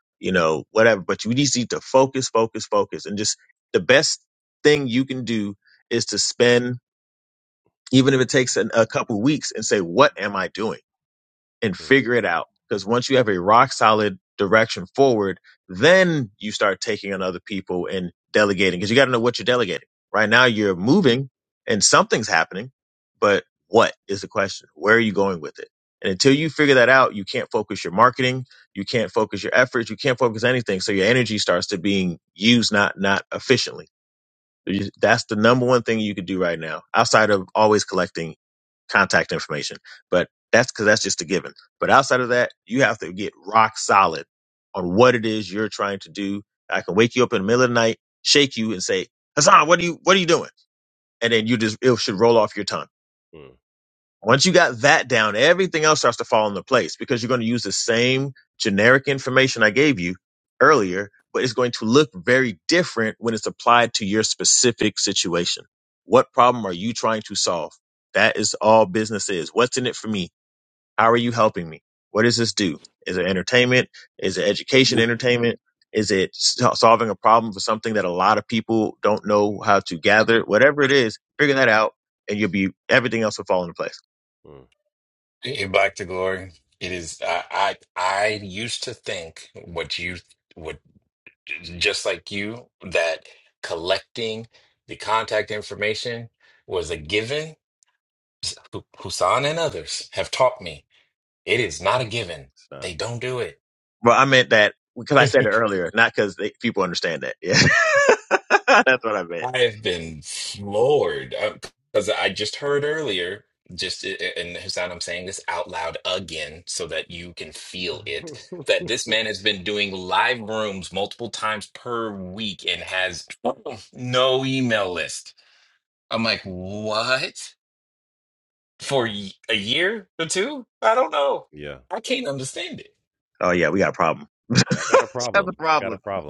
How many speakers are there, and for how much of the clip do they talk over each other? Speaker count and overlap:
3, about 1%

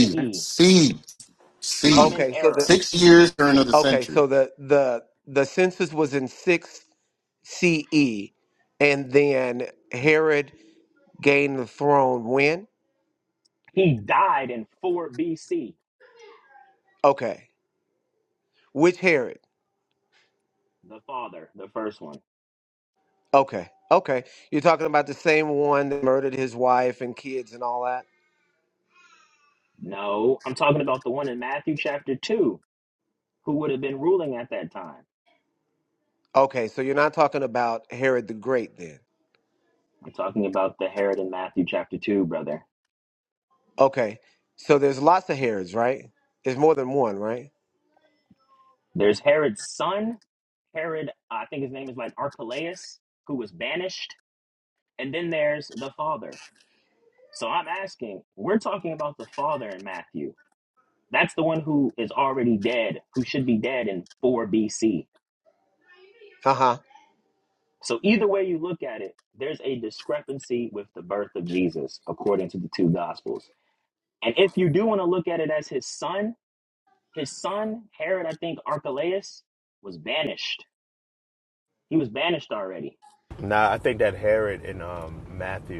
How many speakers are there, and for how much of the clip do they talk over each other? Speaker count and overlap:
4, about 2%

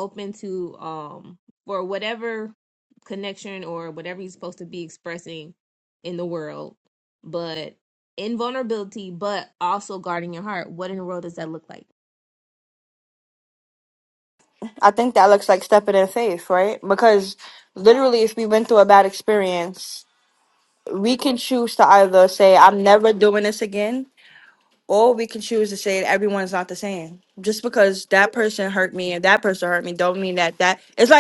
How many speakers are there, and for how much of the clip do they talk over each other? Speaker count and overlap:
2, no overlap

